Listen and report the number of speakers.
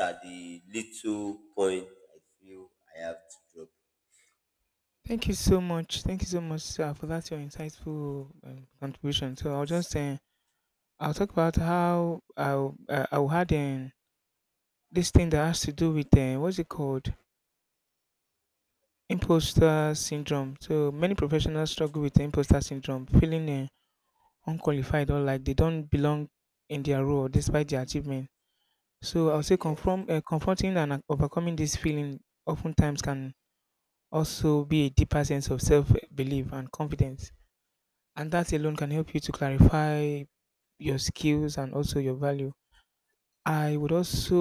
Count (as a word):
two